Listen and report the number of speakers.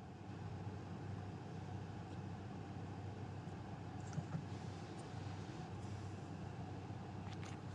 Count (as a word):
zero